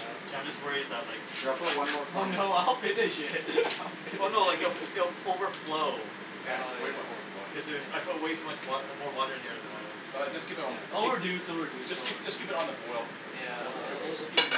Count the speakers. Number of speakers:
4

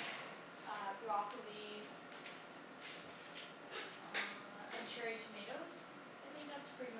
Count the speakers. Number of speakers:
1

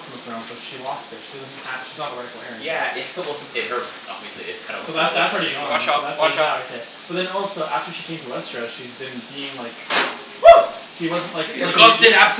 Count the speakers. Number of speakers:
3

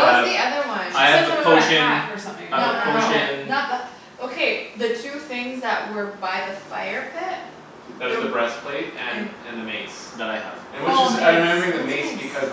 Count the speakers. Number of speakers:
4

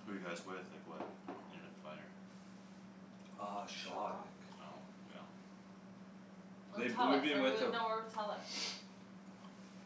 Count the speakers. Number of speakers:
3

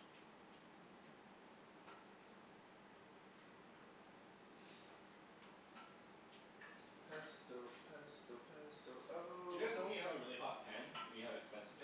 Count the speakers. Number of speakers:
2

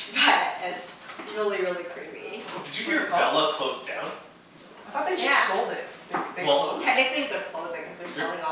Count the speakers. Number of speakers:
3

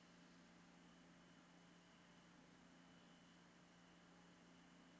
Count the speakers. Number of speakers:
0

